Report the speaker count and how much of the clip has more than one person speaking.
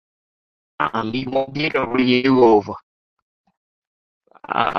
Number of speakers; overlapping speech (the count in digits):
1, no overlap